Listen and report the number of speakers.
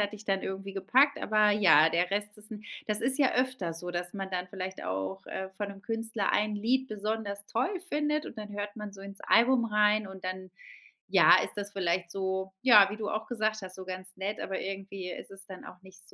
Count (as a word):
one